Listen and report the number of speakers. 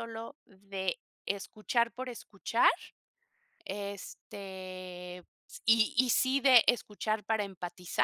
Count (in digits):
1